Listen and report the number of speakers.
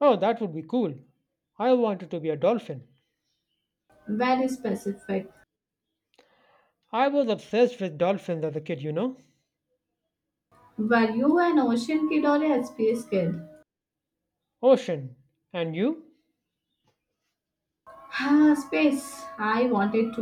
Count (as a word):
two